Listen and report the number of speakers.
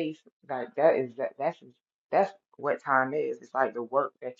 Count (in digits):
1